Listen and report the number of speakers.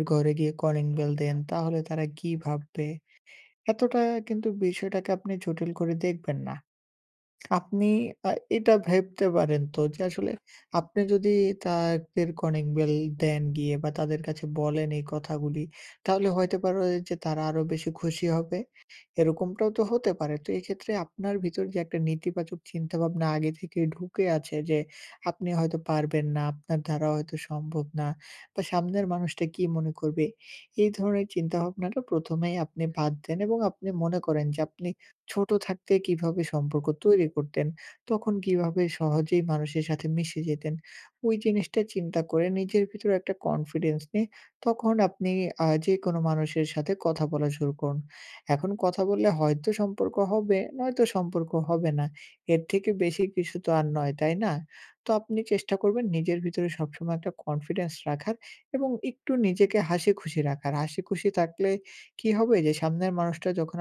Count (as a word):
one